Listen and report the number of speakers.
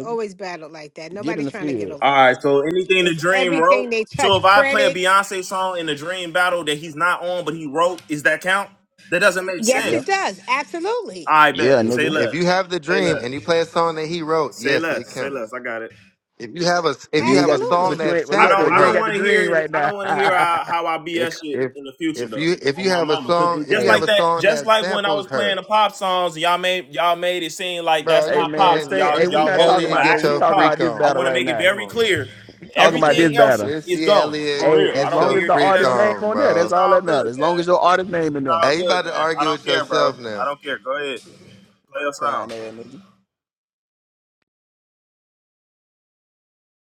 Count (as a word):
four